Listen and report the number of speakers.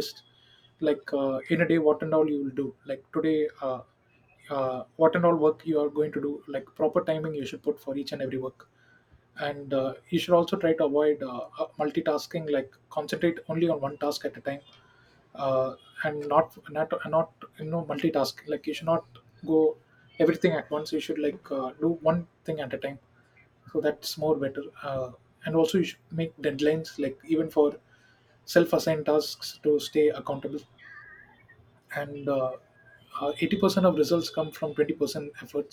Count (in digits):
1